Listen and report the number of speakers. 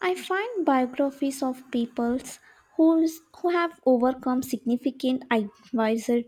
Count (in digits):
1